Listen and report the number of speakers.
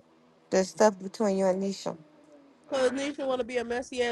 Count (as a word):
two